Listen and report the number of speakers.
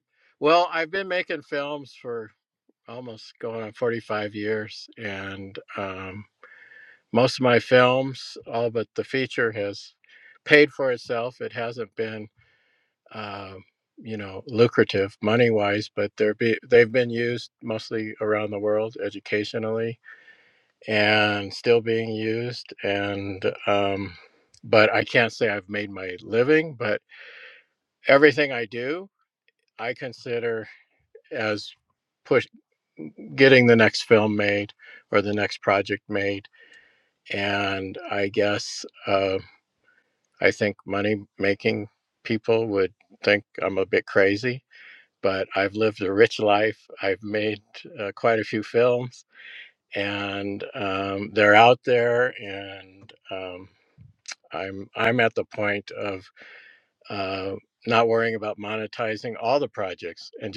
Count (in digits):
1